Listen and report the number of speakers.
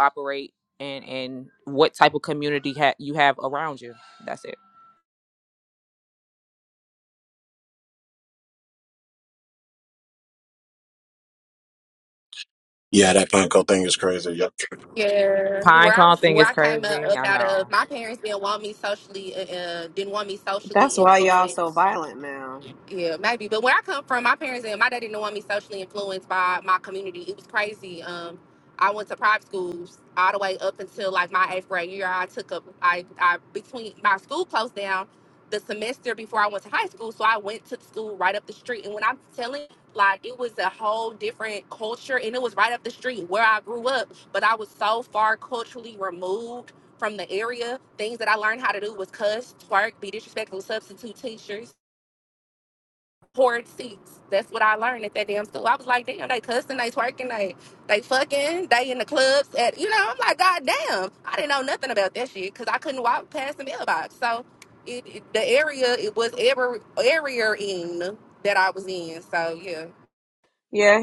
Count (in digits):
4